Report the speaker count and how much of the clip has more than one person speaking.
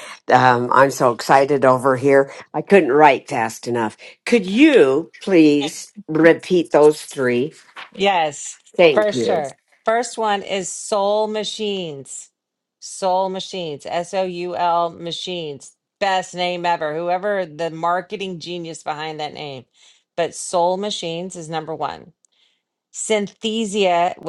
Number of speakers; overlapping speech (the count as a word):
two, about 2%